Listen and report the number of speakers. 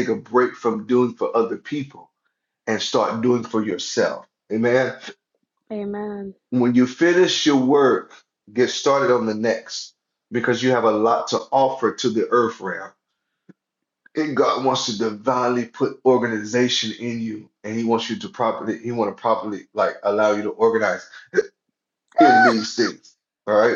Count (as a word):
two